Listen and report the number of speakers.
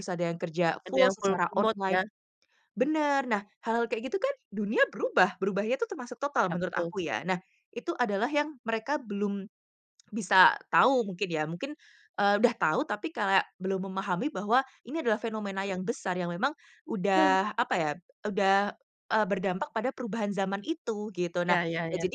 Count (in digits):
2